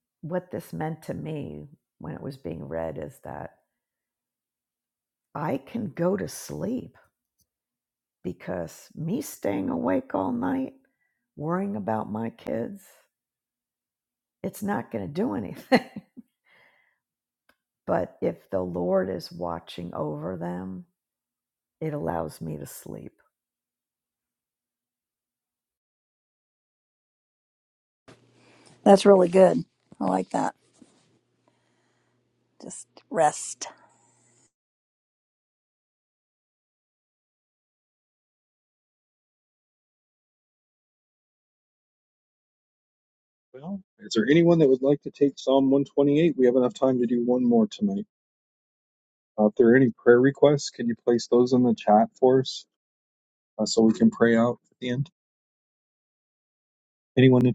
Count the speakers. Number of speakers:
3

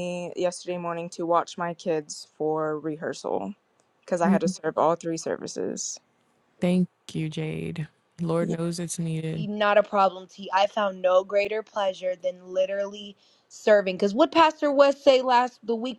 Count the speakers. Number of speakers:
3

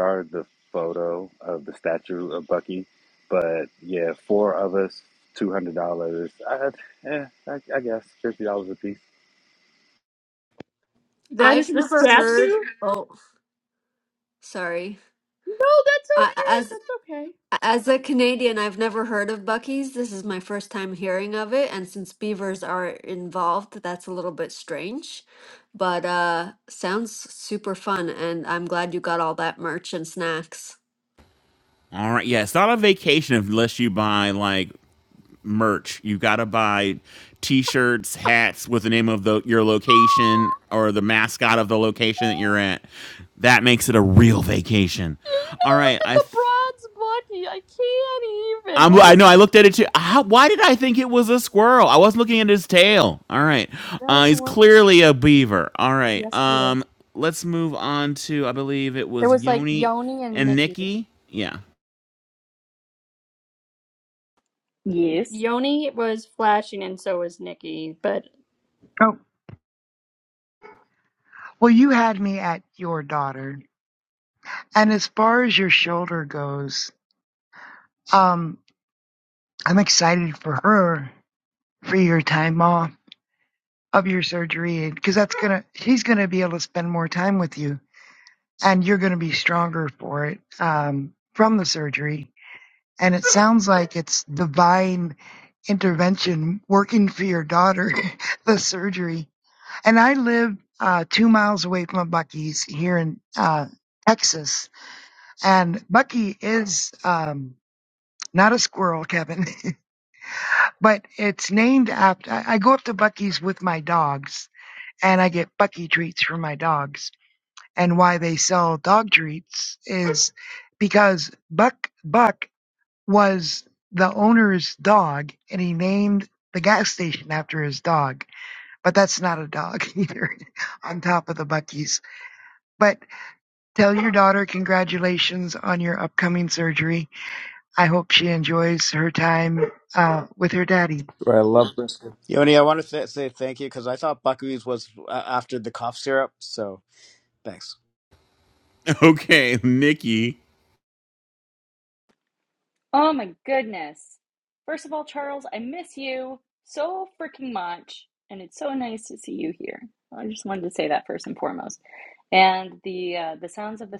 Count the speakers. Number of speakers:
7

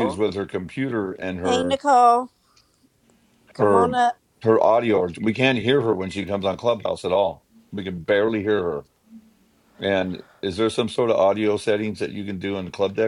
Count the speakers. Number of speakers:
2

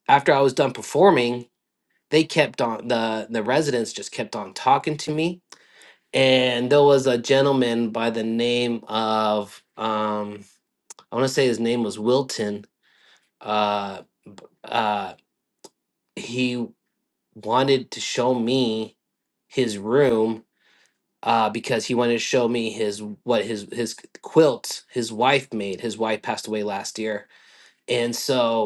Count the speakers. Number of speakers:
1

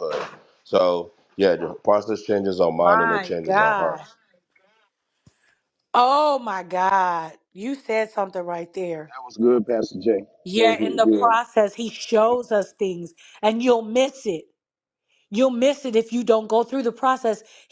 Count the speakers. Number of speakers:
3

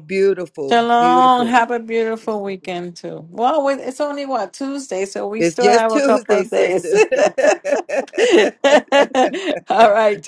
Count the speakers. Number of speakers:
2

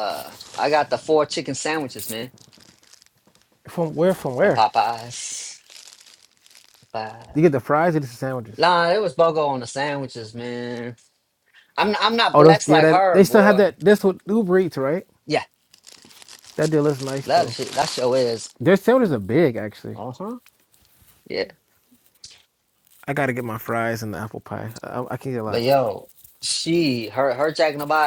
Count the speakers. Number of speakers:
2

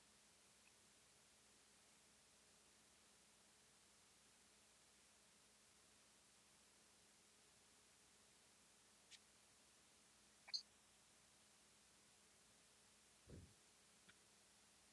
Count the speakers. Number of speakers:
0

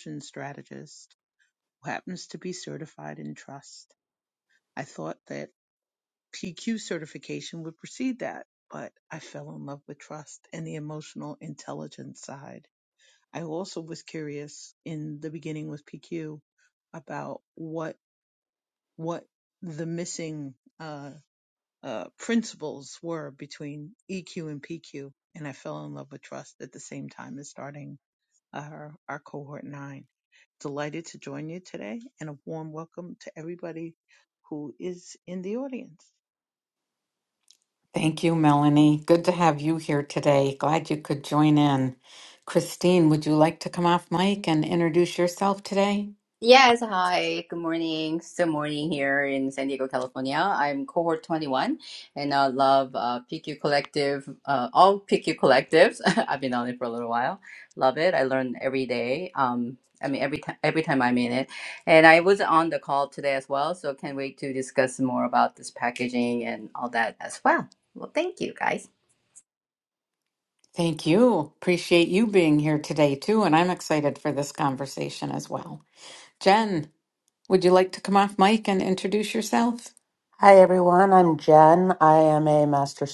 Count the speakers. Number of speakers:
4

